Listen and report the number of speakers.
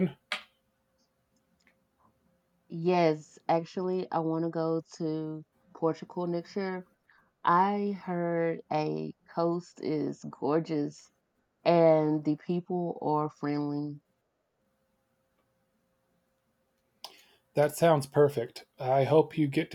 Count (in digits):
2